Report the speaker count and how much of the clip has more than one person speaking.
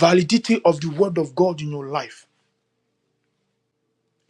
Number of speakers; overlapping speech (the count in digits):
1, no overlap